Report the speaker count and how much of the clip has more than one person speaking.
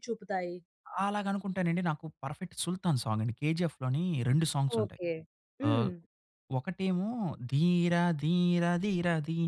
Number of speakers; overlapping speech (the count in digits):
2, about 5%